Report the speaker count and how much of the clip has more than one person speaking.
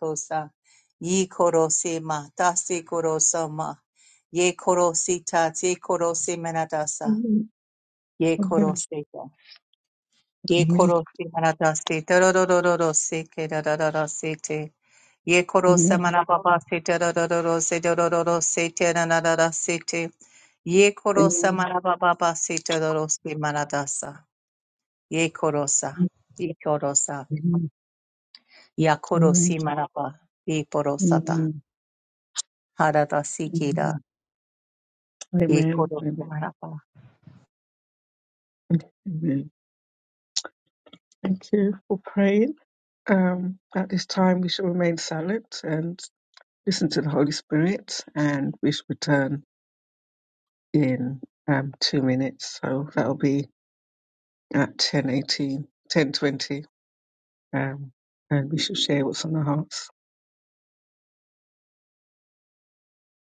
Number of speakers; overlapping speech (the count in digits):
2, about 5%